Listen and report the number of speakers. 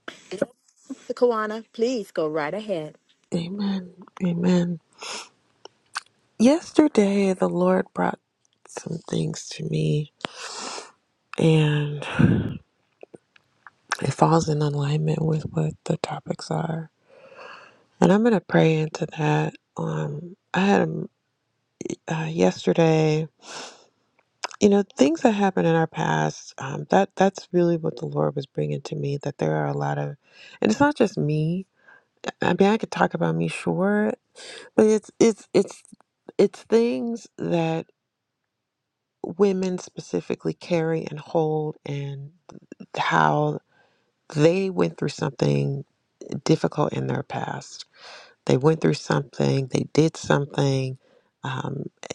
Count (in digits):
2